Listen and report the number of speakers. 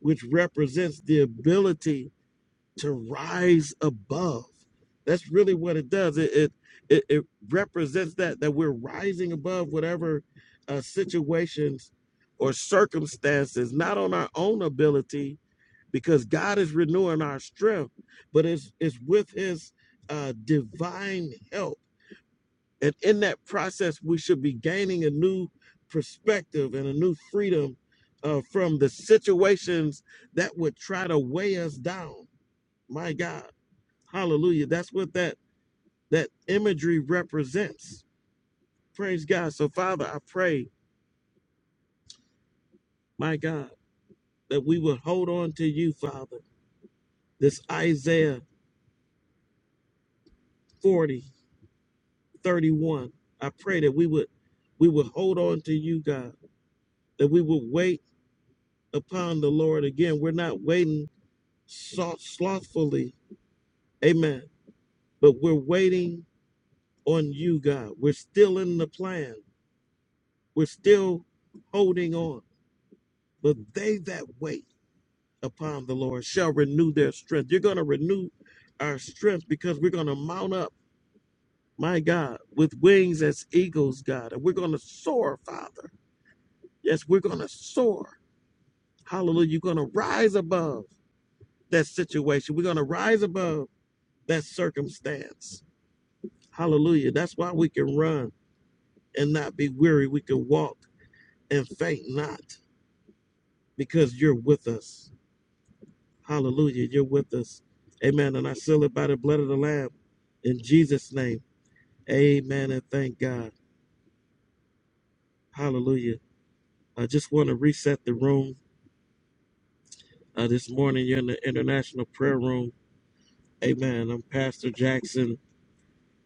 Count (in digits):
1